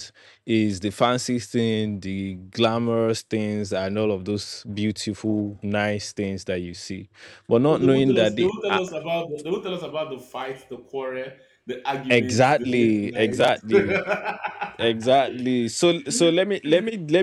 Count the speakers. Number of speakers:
2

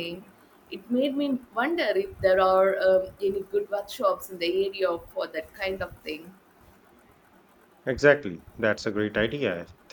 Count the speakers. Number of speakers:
2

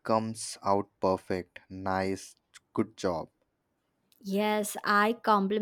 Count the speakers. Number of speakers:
2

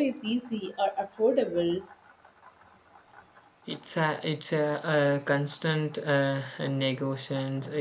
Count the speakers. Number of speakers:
2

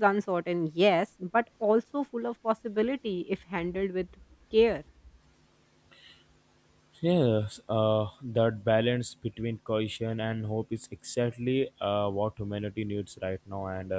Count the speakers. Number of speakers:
2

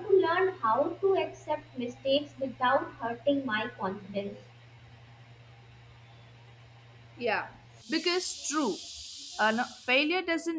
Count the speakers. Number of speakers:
2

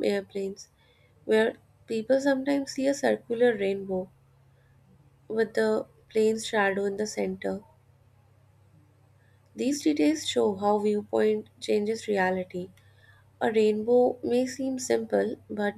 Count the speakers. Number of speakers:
1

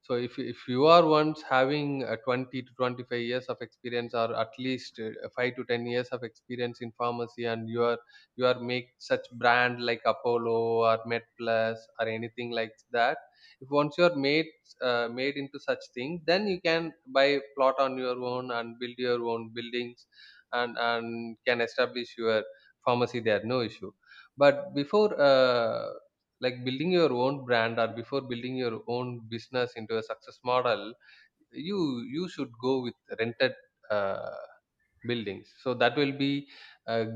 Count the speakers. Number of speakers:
1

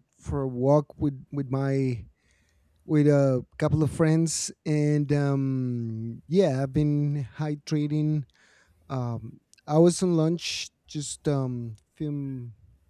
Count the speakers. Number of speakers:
1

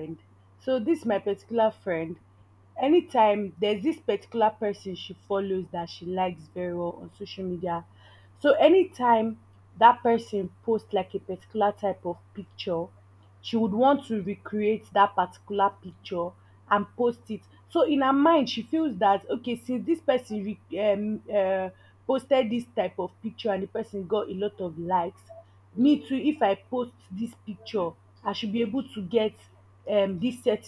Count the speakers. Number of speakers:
1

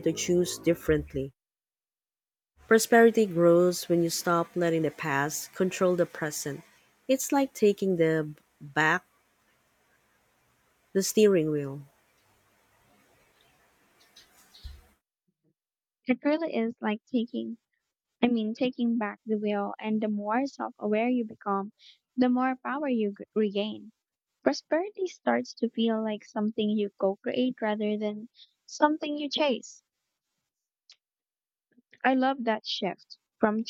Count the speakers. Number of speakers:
2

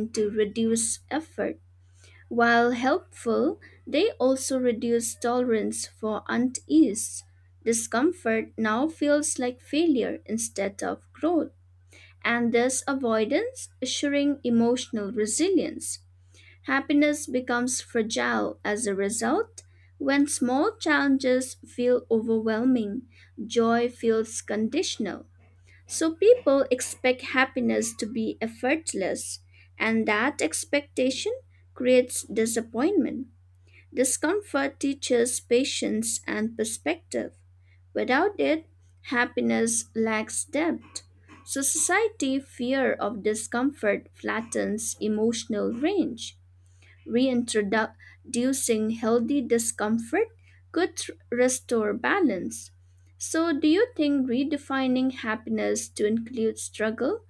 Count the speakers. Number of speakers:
1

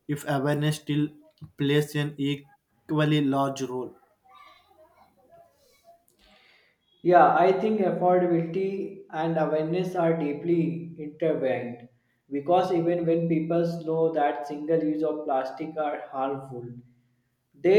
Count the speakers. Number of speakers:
2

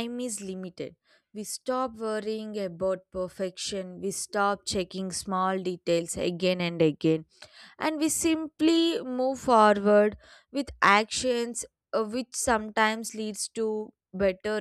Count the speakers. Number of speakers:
1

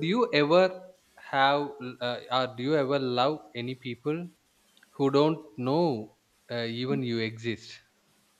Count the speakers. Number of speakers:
1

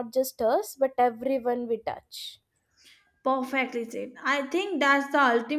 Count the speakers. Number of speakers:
2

